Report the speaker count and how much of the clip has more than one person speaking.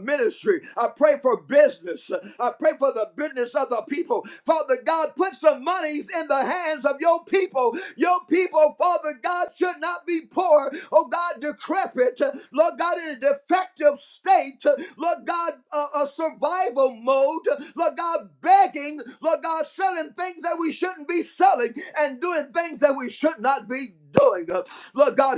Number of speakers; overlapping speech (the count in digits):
1, no overlap